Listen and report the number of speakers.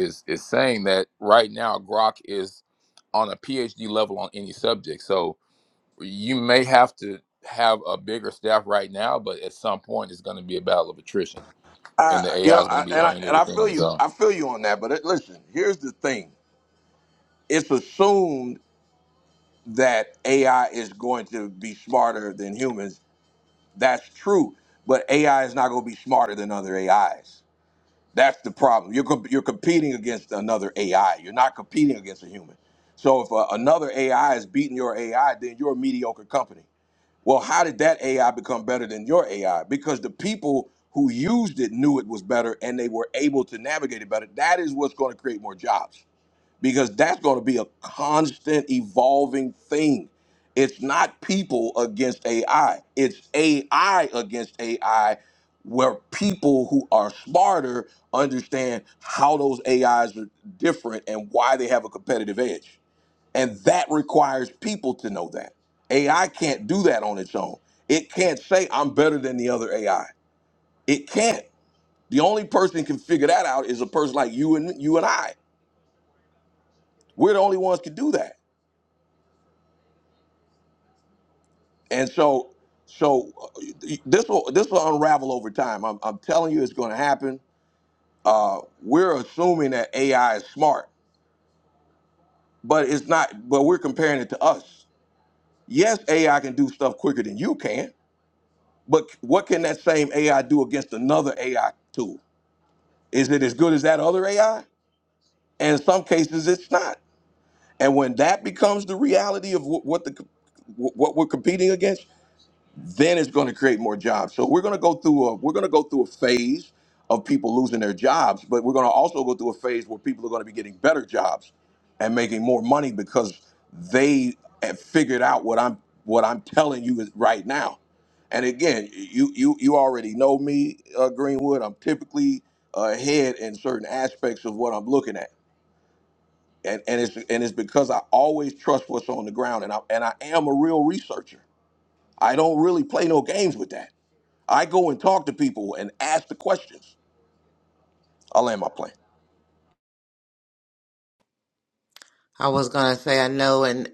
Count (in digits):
3